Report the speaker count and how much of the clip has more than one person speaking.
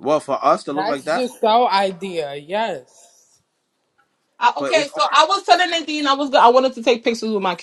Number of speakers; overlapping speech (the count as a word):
three, about 12%